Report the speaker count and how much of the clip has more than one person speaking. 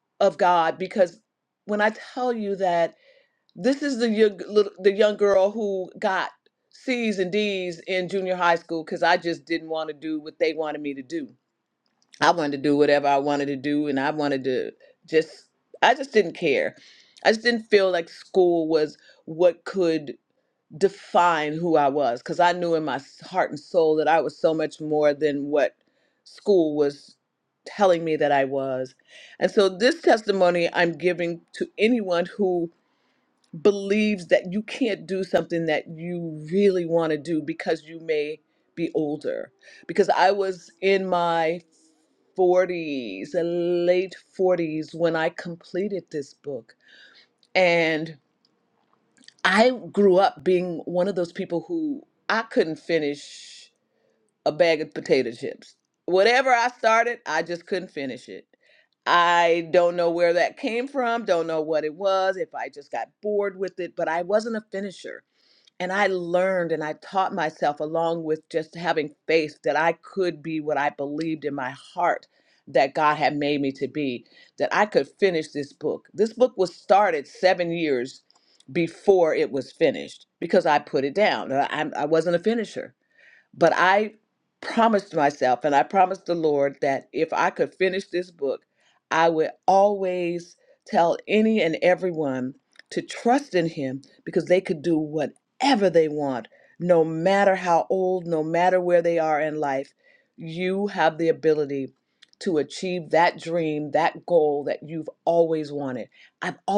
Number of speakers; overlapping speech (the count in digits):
1, no overlap